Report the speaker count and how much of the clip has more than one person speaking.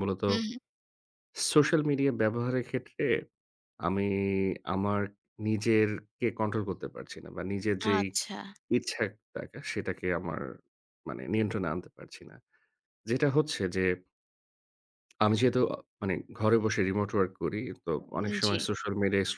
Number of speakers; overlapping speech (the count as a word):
two, about 3%